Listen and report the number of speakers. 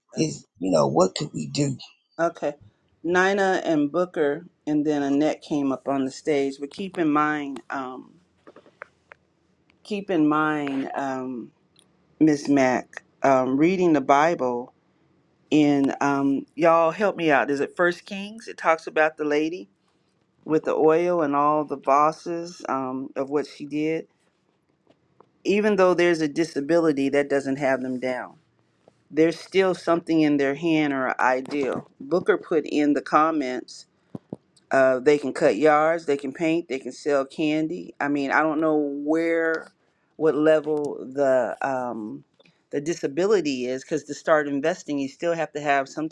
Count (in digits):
2